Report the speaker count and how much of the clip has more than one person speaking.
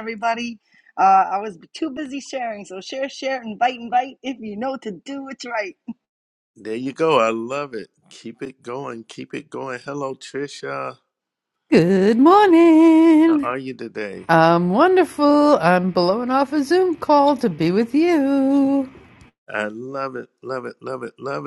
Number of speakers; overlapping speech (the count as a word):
three, no overlap